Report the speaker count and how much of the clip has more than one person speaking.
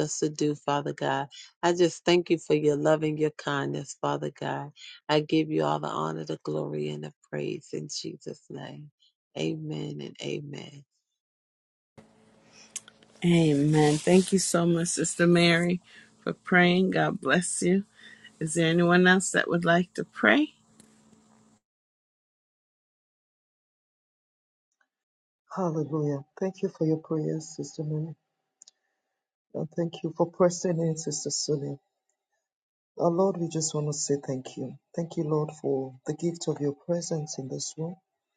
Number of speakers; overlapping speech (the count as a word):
three, no overlap